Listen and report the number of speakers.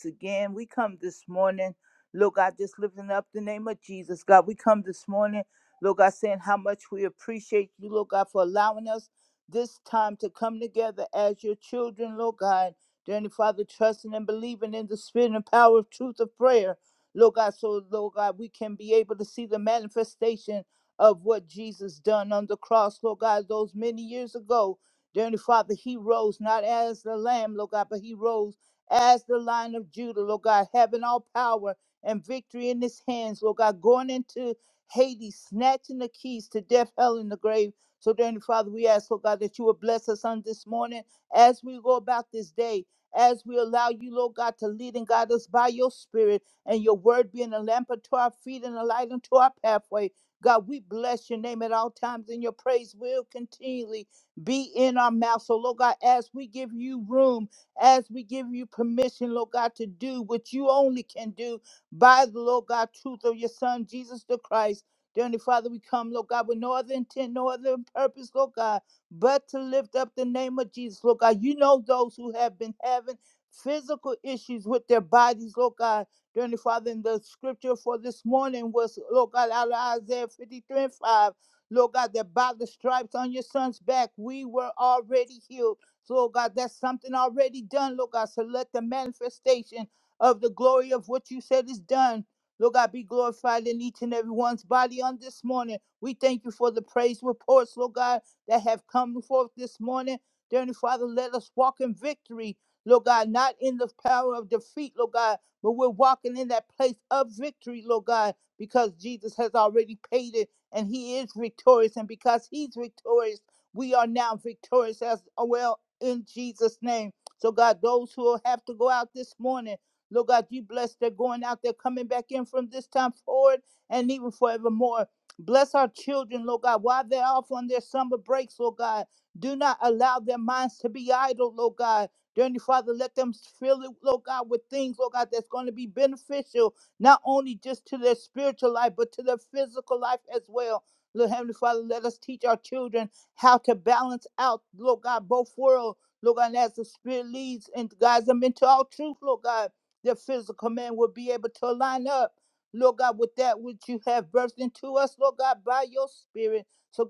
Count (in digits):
1